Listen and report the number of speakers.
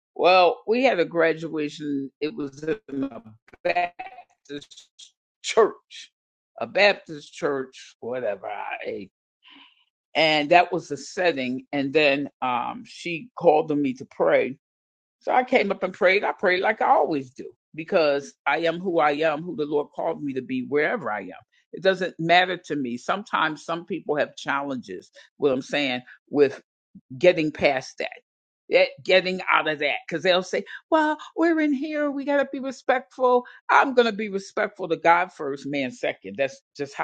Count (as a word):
one